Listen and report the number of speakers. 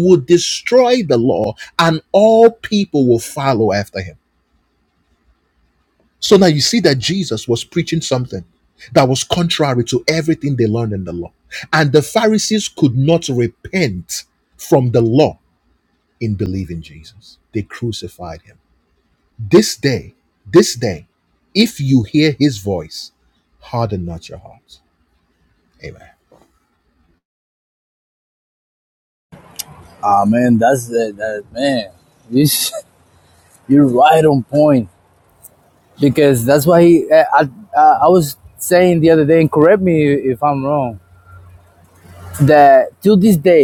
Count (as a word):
two